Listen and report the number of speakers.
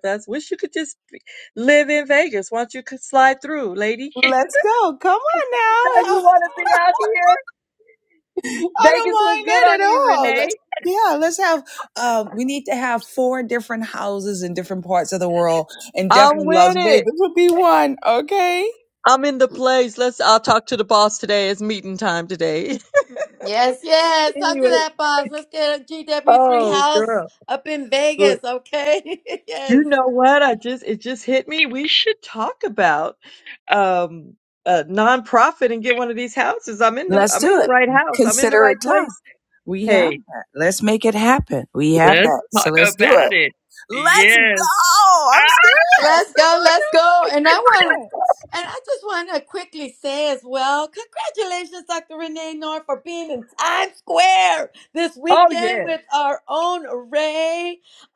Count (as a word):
three